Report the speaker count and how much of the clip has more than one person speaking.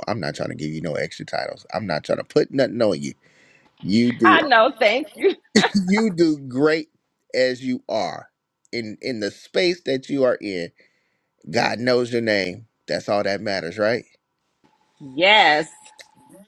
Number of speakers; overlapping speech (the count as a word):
two, about 1%